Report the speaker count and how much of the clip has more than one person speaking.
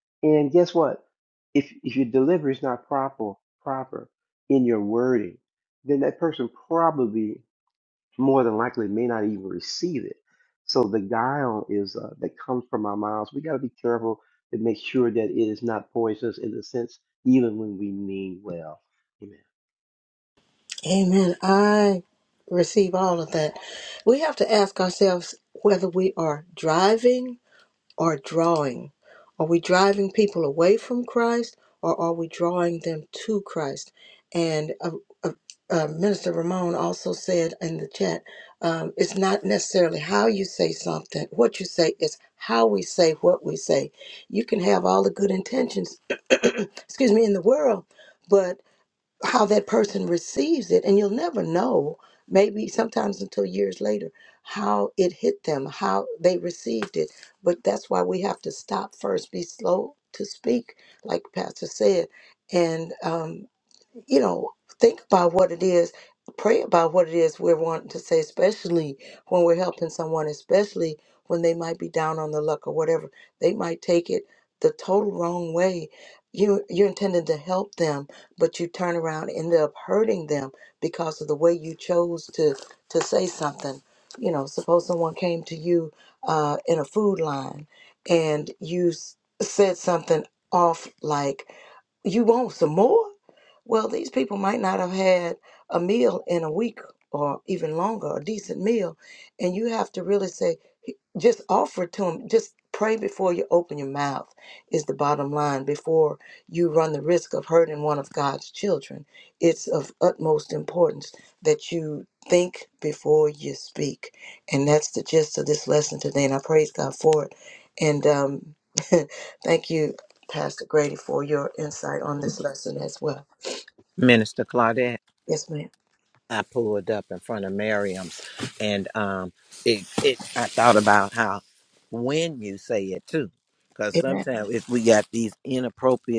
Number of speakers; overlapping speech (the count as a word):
three, under 1%